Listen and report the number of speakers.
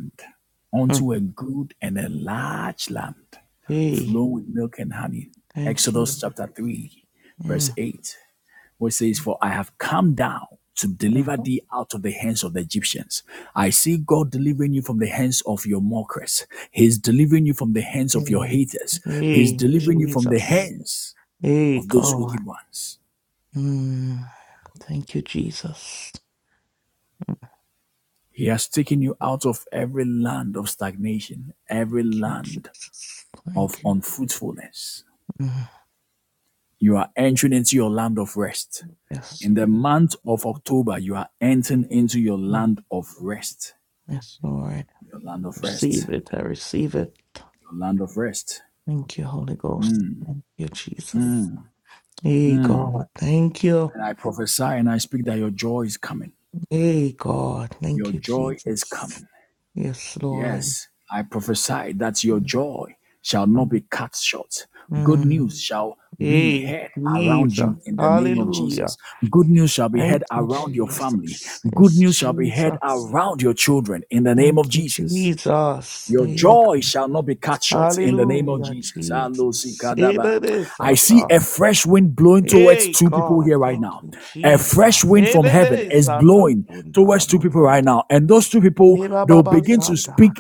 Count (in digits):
2